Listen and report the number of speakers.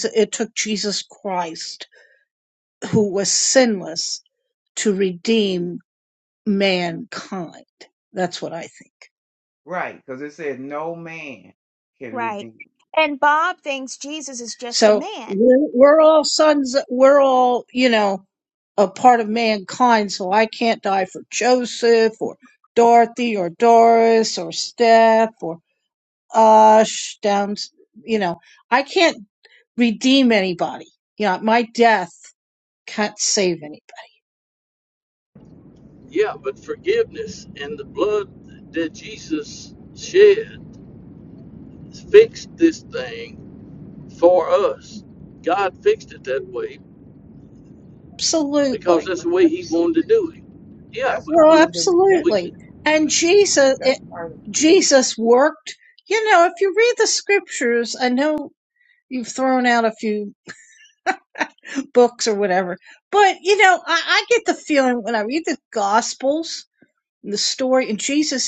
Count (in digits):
4